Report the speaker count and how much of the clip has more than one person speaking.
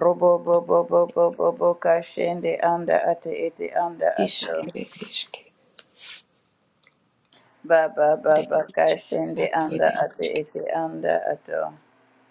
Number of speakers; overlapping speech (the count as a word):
two, about 18%